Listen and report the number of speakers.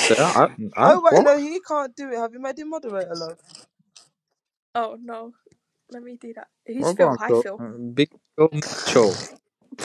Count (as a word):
three